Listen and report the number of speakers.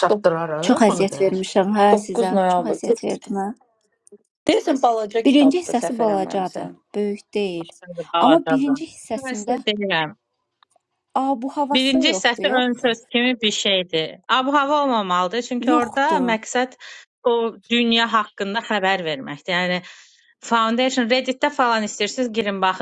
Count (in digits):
4